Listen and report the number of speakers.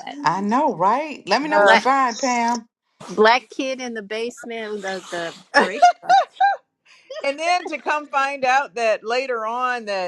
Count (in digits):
3